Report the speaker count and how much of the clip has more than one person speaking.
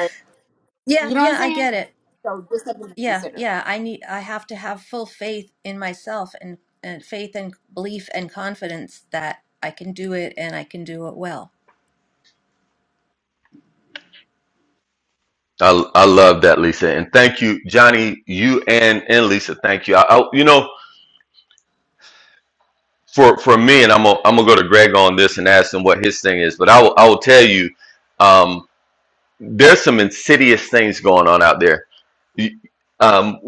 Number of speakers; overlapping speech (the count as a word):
three, about 3%